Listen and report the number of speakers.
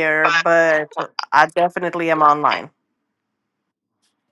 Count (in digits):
1